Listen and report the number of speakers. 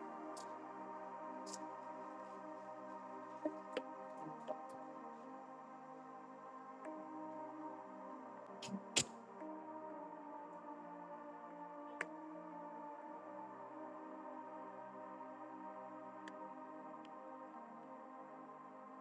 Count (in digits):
0